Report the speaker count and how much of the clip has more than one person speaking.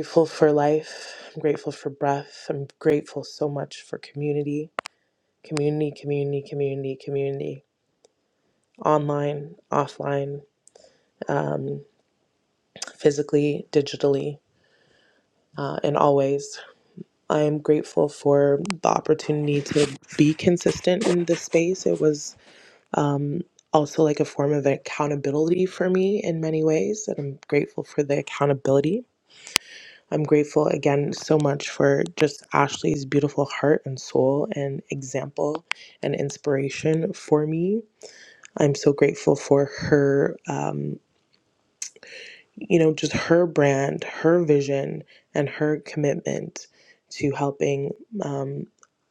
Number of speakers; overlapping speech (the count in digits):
1, no overlap